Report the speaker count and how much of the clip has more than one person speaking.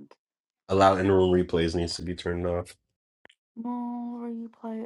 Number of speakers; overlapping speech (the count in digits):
2, no overlap